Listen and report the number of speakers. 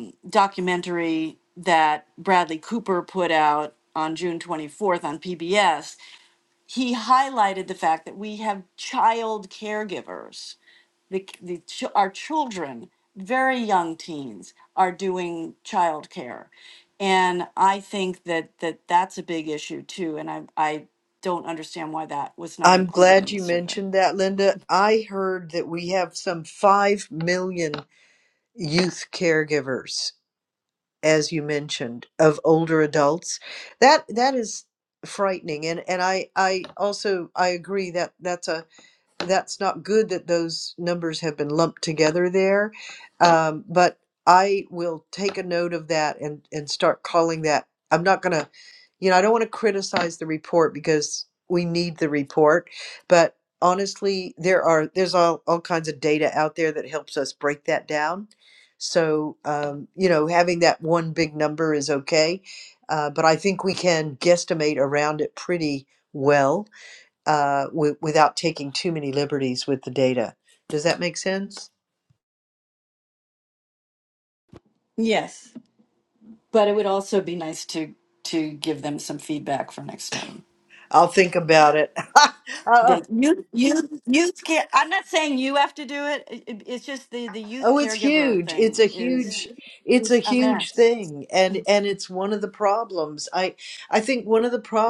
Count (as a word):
two